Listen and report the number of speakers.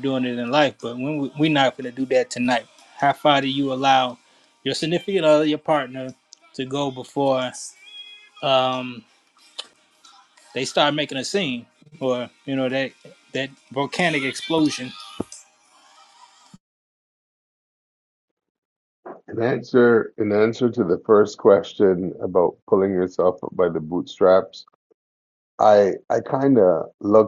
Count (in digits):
2